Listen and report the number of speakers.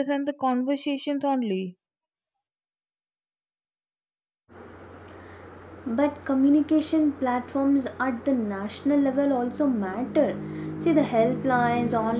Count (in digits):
2